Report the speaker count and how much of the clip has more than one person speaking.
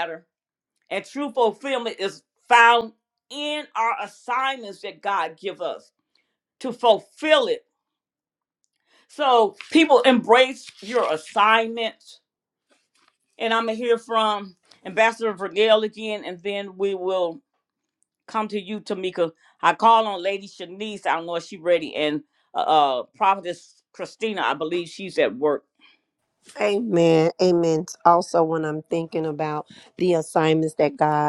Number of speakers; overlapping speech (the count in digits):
2, no overlap